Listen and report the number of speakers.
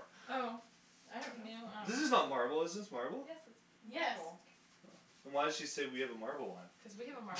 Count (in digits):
3